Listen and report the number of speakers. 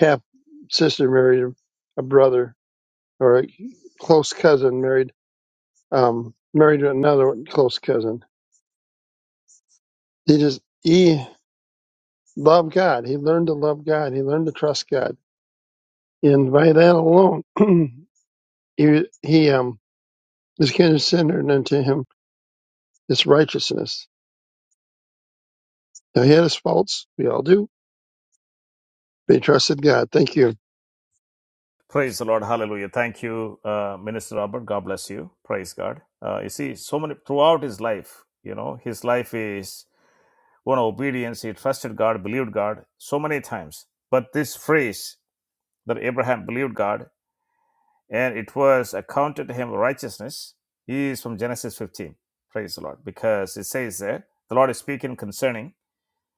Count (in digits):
2